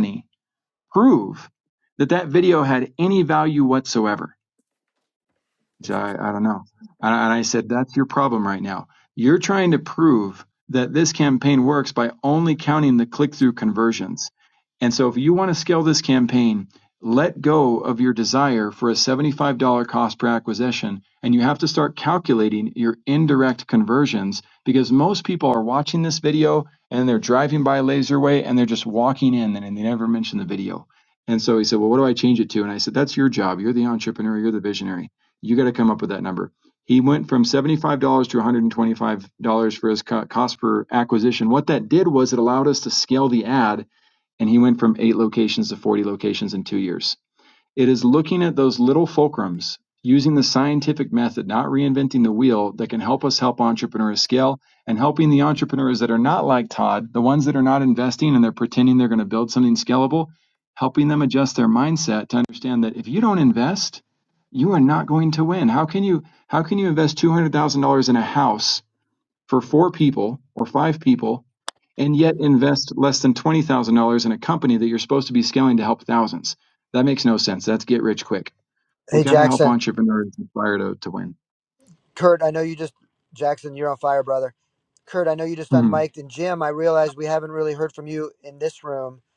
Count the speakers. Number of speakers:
two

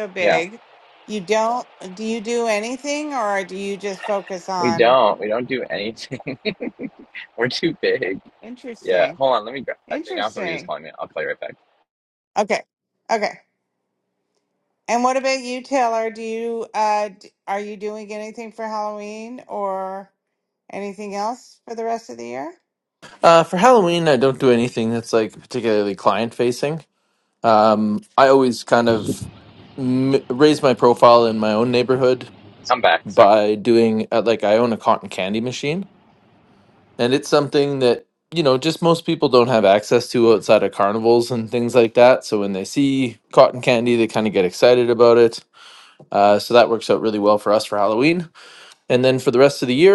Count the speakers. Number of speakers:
three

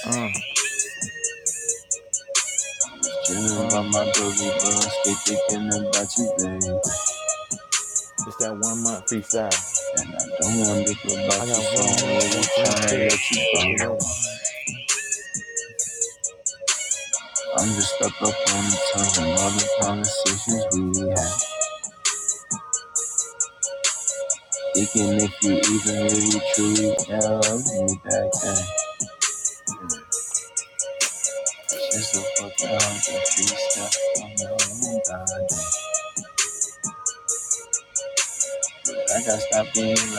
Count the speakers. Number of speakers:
two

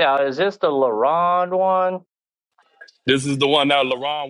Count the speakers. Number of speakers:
two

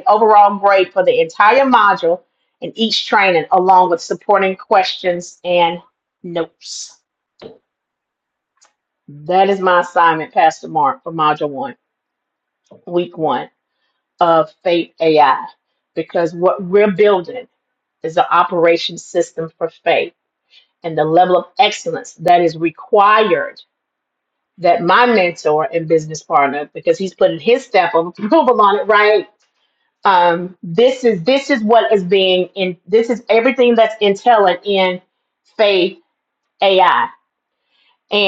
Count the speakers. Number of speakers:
one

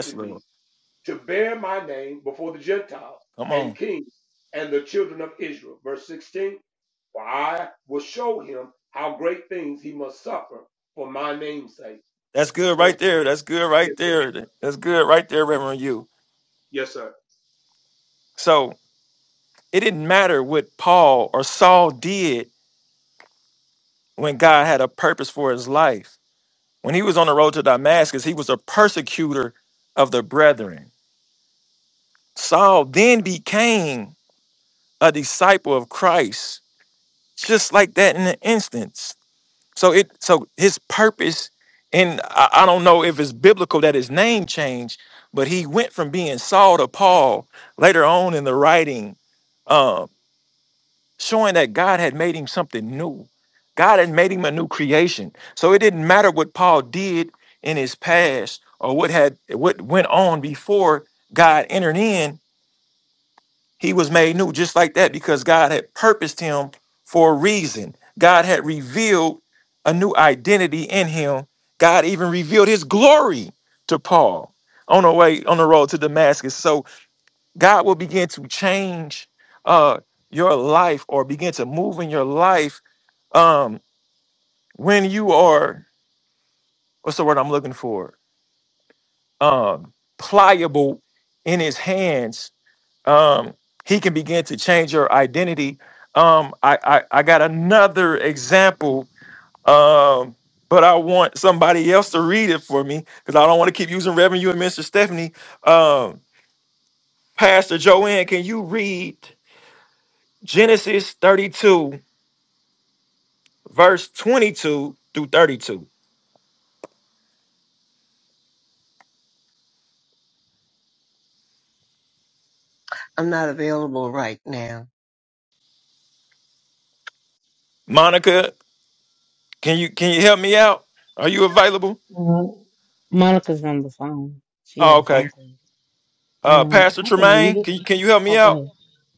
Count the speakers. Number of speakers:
four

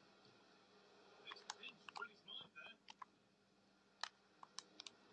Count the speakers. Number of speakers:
zero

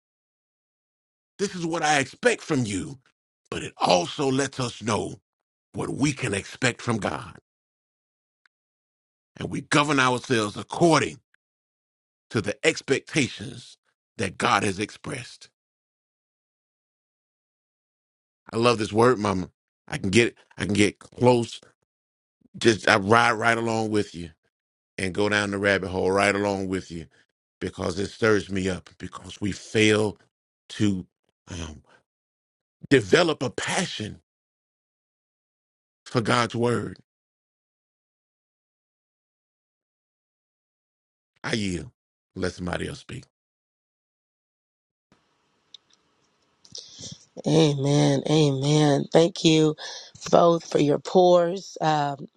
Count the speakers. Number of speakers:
two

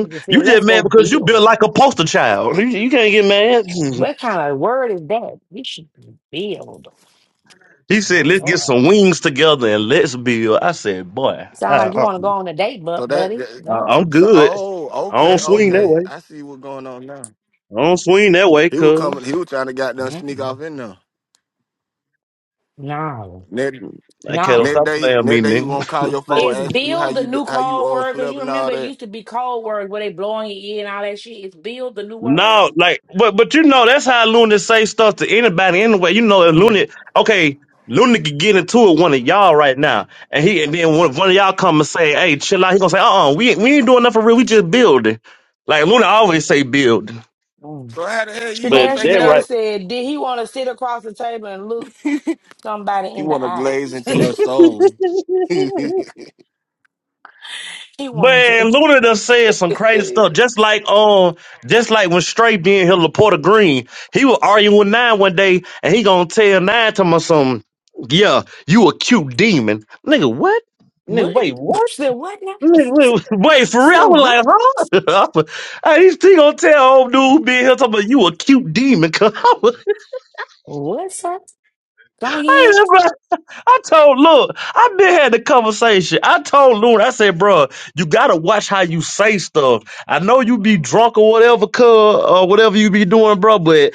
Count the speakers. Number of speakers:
three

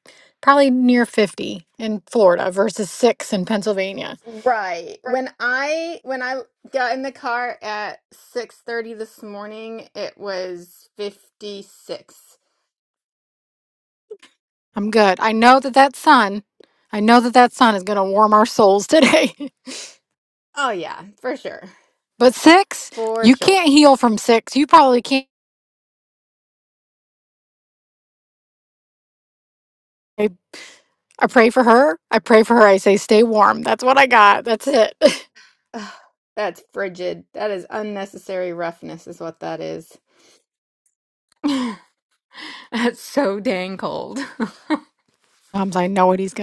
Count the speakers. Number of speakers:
two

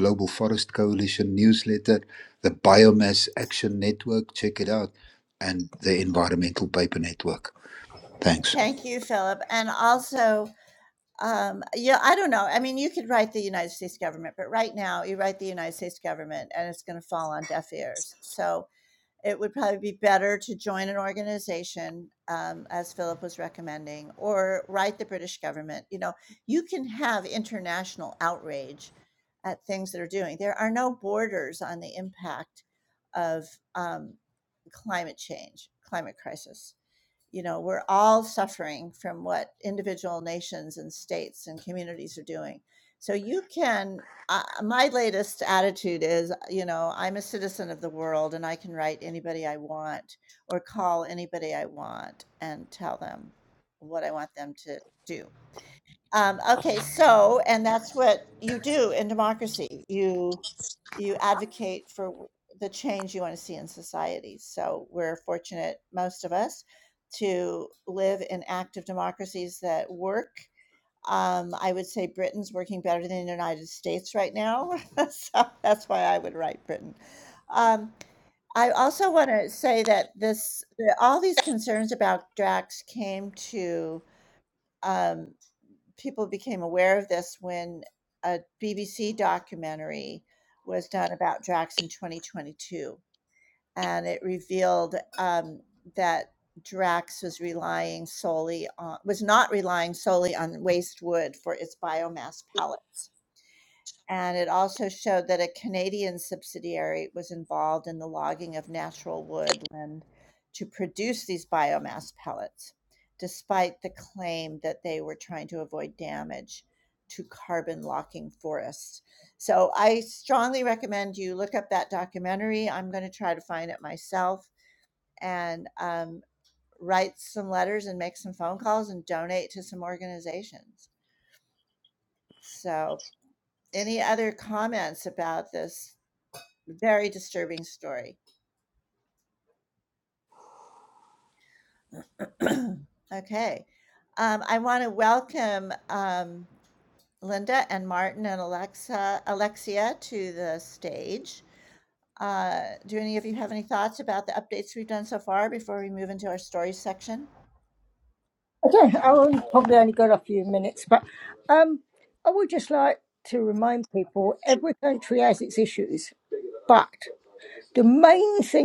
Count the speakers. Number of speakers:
three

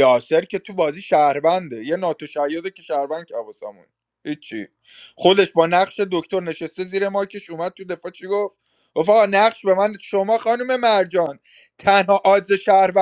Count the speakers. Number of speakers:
one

